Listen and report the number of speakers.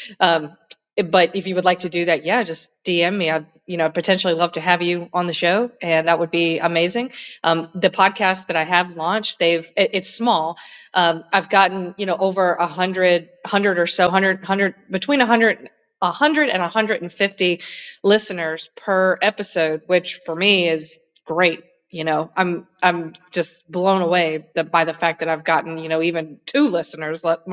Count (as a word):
one